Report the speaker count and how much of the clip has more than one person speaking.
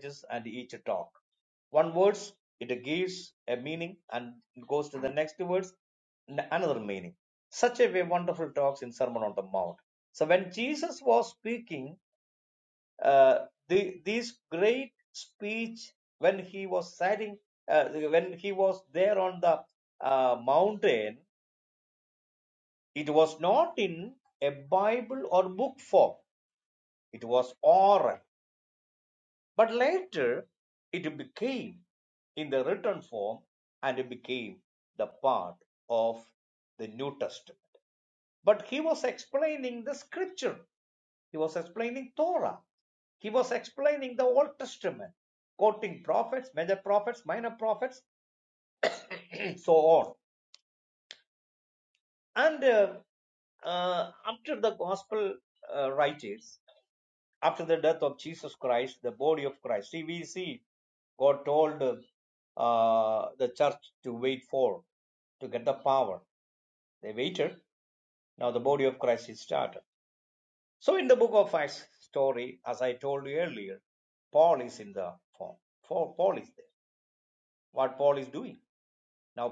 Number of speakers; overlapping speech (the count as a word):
one, no overlap